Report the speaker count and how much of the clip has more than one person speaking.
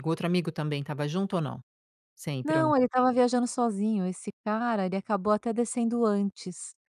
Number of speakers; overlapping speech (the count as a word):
two, about 4%